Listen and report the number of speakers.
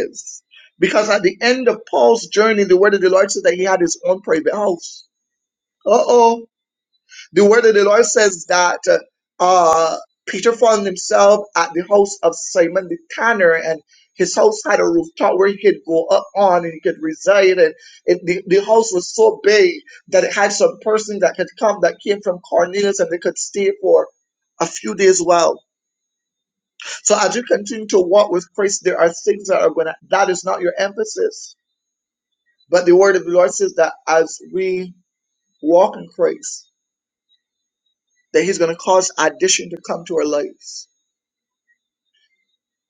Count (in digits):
1